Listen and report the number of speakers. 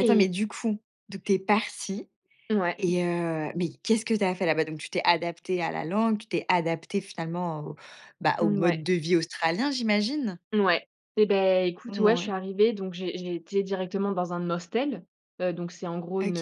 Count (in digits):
2